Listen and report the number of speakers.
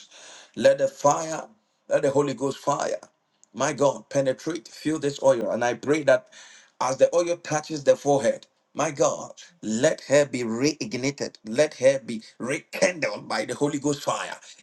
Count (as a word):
one